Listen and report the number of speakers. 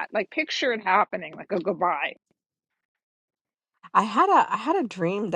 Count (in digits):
2